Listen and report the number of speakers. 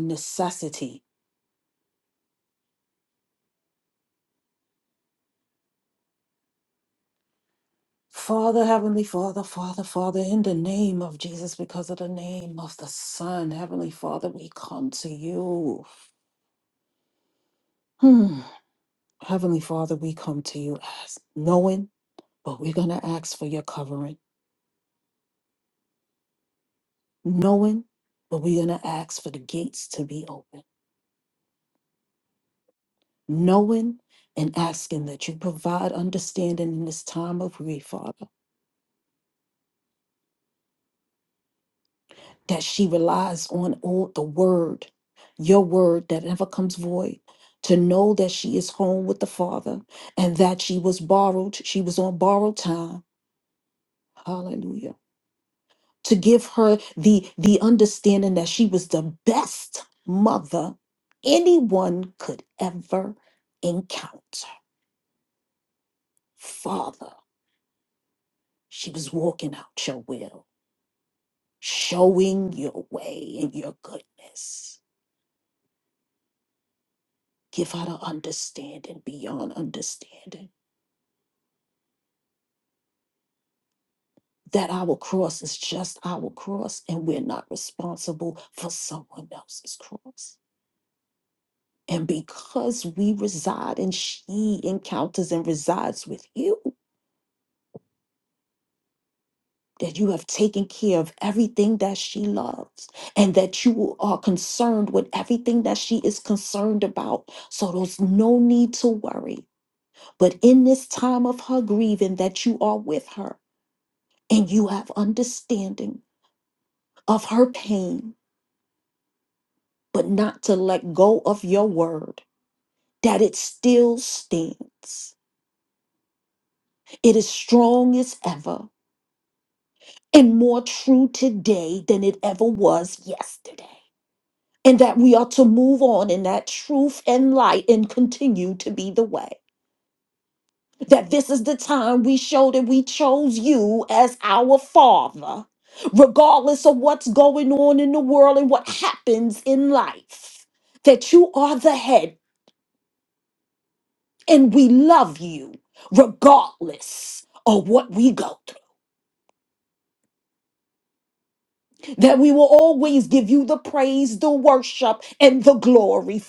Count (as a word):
one